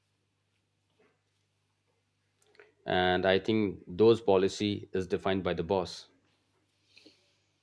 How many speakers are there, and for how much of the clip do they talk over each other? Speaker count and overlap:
1, no overlap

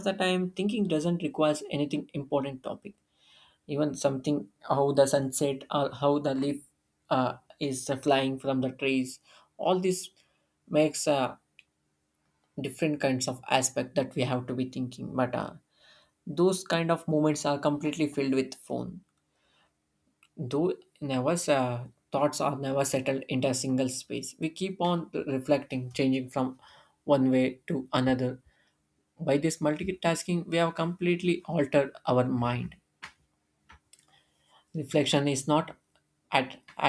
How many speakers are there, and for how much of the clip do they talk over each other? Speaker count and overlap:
1, no overlap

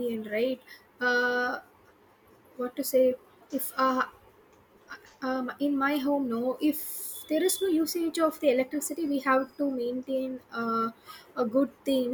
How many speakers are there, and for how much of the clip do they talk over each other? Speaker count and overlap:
1, no overlap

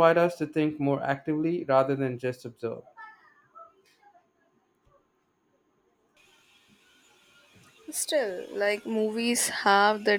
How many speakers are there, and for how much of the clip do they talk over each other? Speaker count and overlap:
2, no overlap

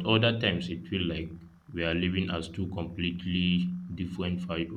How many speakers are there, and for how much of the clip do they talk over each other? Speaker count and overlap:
1, no overlap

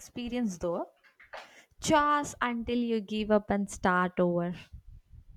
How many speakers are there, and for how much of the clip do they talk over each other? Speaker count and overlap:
1, no overlap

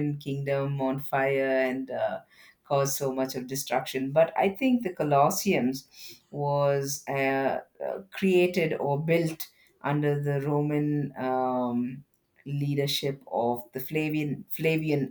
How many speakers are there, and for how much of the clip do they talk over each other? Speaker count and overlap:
1, no overlap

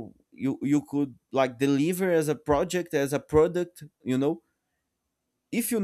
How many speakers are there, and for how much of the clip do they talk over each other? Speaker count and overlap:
1, no overlap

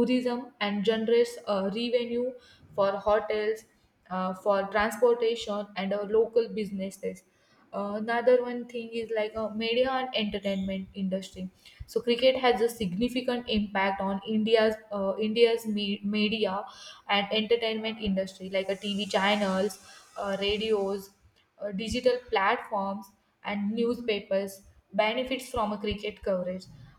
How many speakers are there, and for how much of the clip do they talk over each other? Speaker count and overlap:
1, no overlap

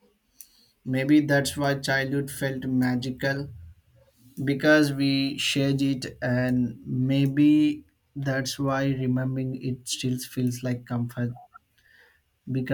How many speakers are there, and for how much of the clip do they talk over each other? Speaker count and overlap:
1, no overlap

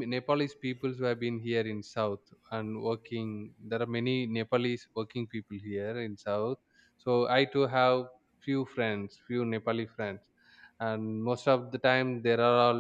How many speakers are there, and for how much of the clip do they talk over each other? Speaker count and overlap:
1, no overlap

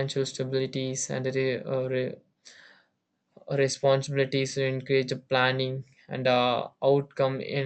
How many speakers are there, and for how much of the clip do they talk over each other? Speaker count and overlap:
1, no overlap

